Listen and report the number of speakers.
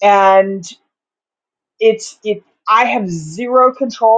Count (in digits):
1